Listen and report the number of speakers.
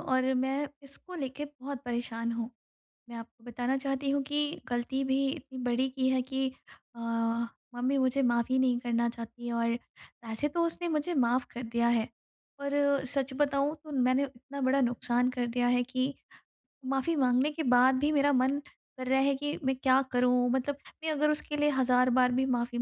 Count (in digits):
1